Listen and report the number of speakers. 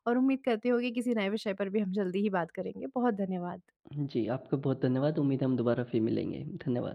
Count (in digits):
2